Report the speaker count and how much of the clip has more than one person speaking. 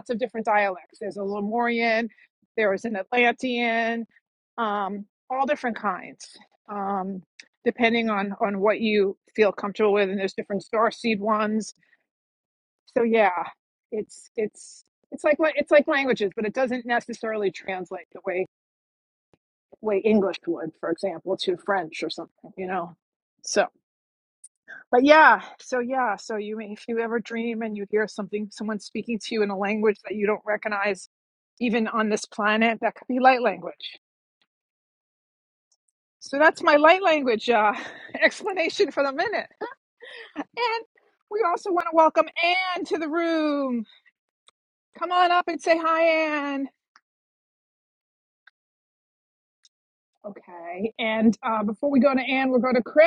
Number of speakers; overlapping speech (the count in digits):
1, no overlap